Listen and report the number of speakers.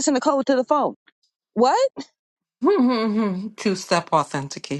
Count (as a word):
two